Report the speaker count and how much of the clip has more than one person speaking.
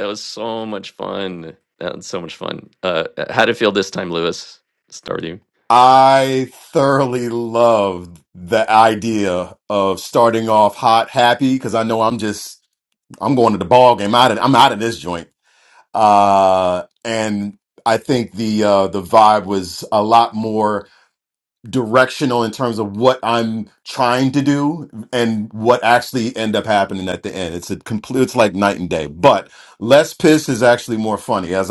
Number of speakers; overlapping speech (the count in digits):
2, no overlap